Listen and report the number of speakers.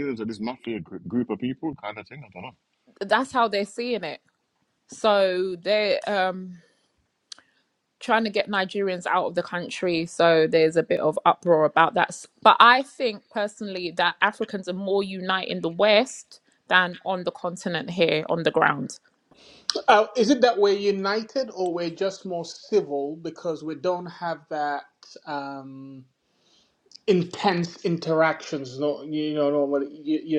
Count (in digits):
3